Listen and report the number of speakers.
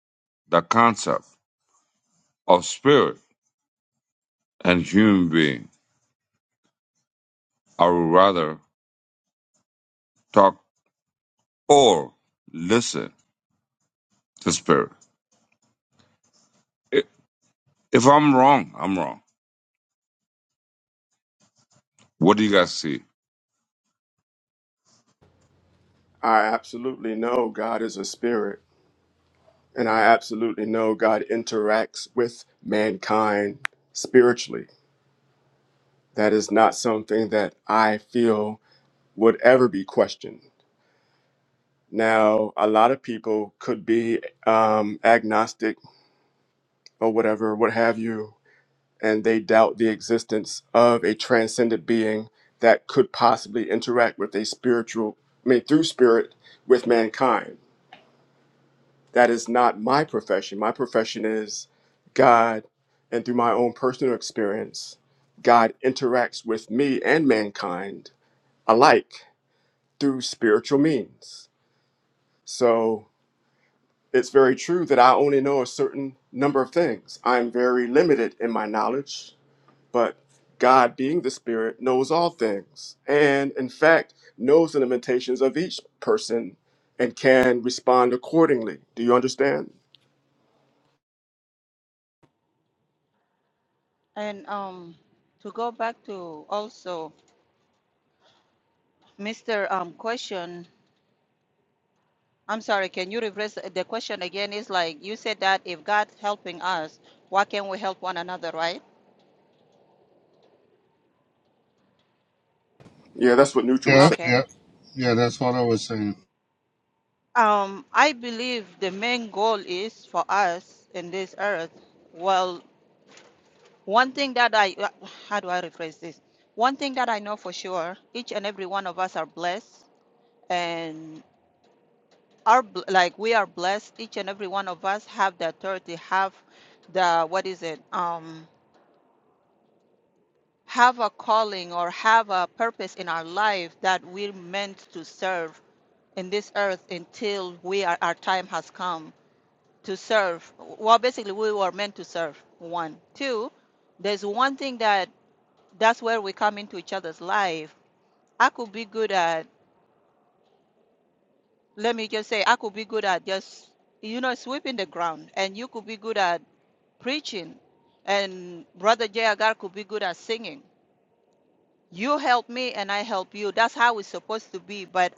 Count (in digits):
4